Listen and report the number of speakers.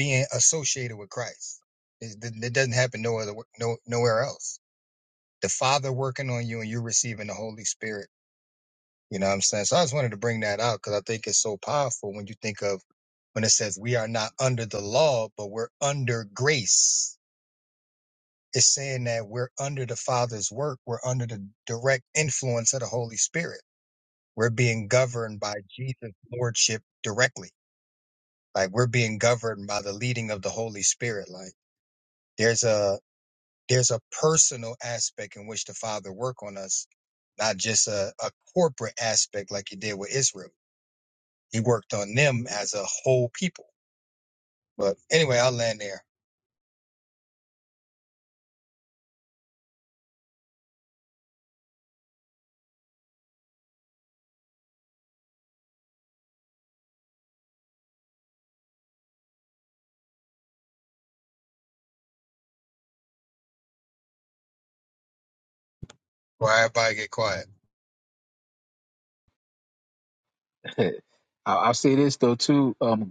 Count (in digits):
2